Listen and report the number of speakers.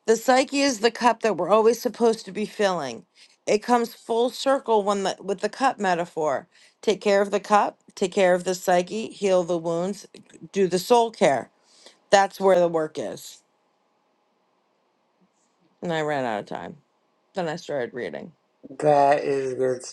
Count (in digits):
2